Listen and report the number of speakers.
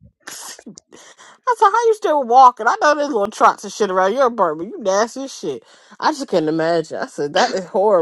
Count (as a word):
one